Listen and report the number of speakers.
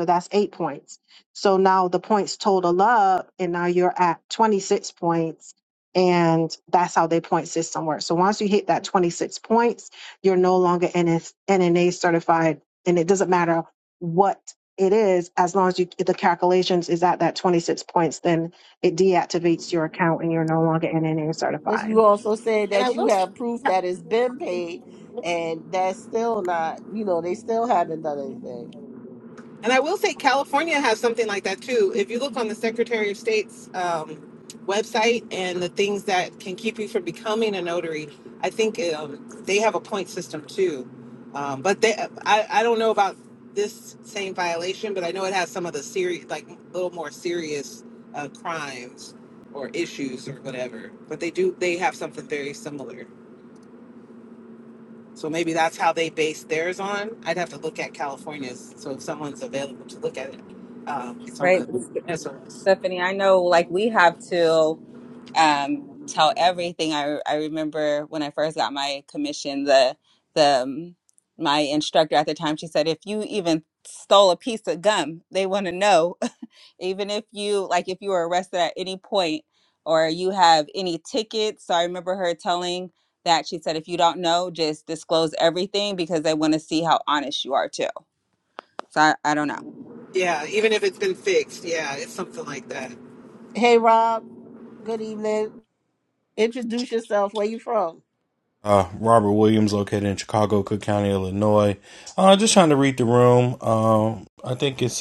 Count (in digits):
5